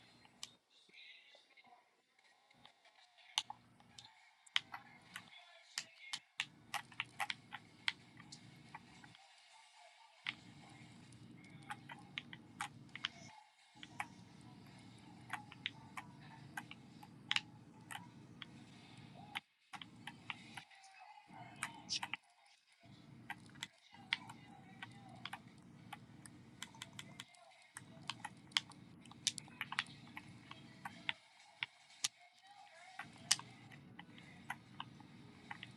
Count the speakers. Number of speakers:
0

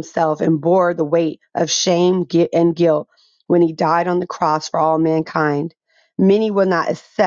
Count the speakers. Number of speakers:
1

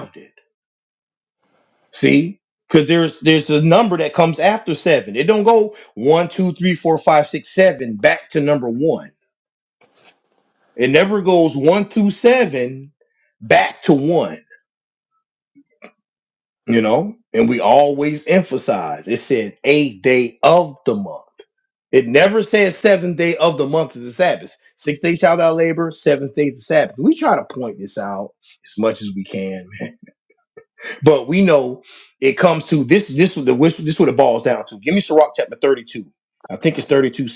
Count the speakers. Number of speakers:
1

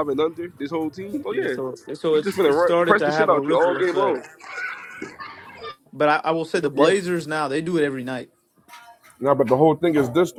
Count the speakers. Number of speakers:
3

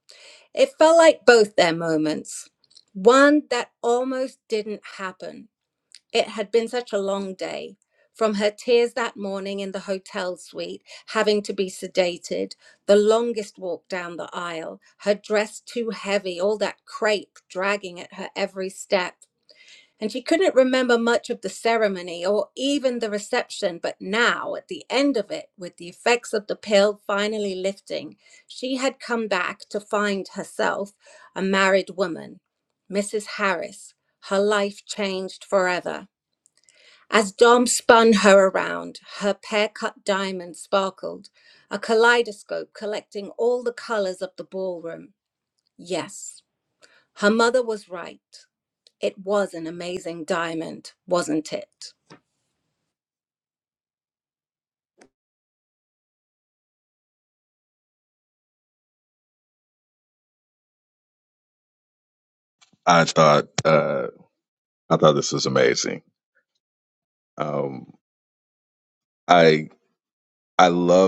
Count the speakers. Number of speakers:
2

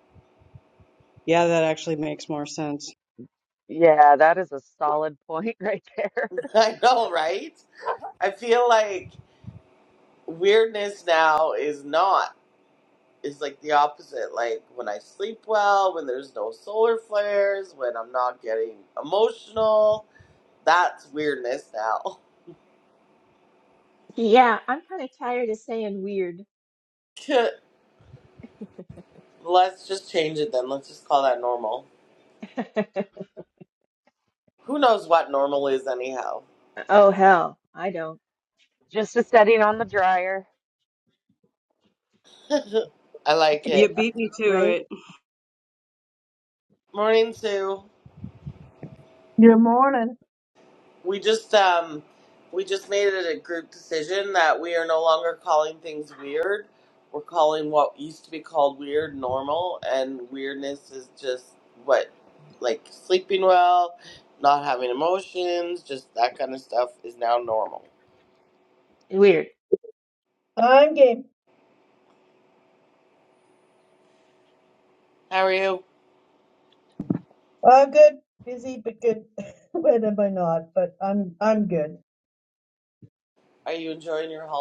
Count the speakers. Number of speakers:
5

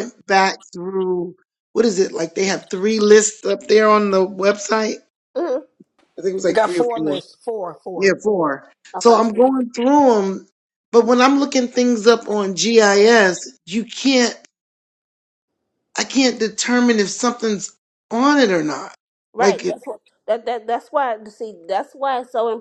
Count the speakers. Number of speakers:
3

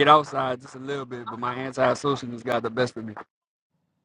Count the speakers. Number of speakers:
1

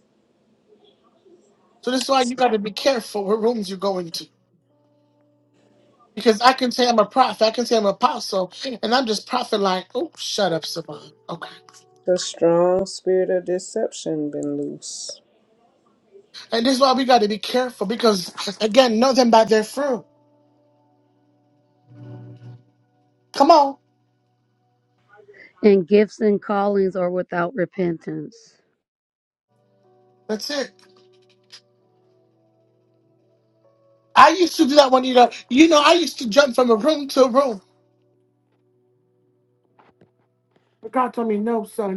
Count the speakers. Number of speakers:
3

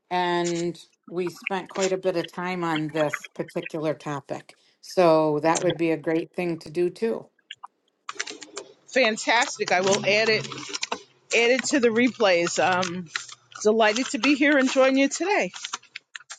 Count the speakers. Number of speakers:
2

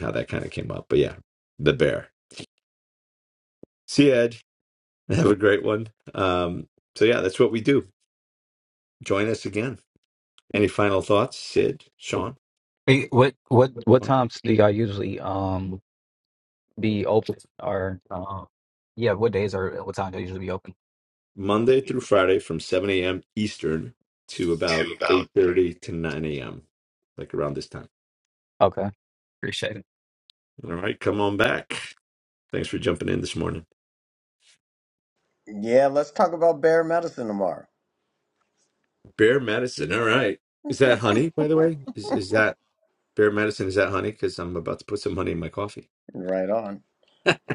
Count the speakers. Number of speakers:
3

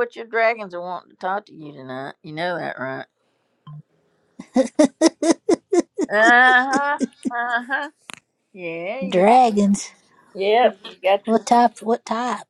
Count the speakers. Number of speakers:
2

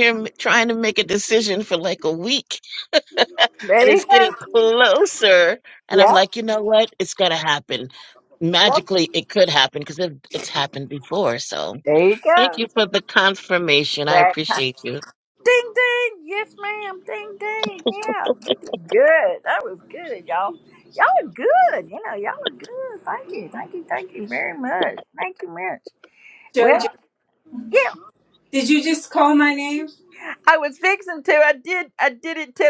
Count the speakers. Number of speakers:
3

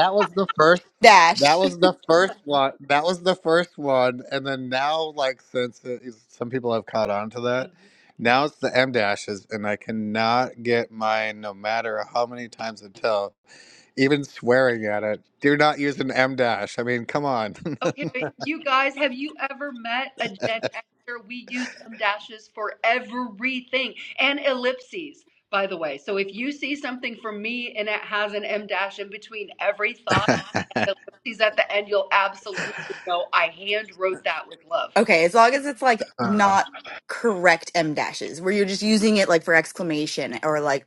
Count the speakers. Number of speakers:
3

